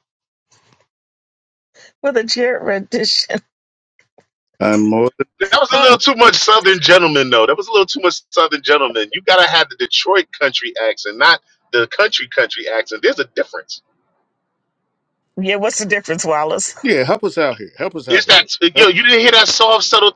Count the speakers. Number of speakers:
3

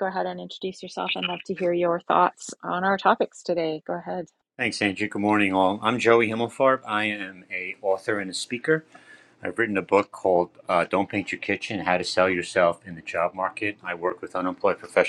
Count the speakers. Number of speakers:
2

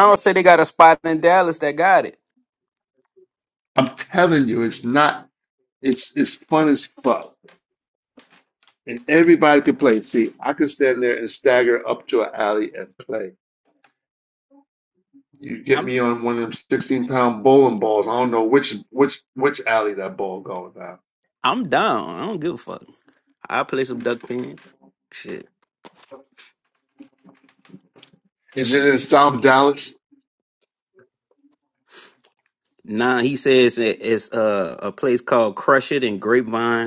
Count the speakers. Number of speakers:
2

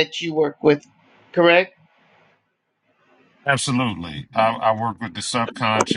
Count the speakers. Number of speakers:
2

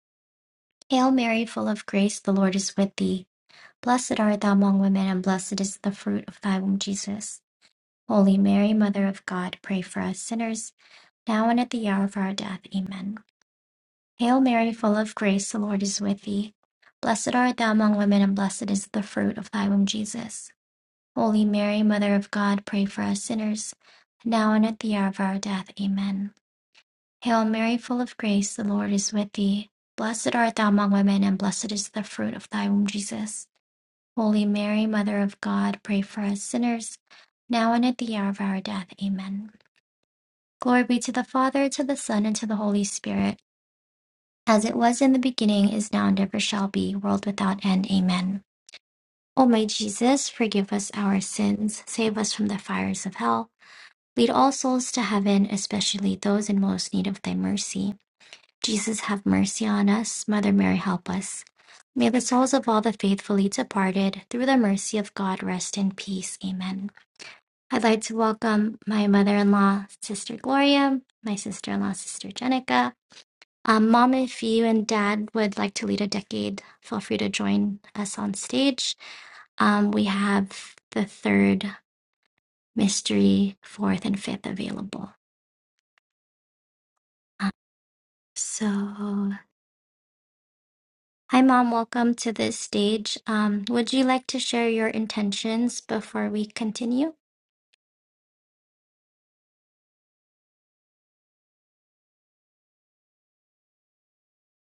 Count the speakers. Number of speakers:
1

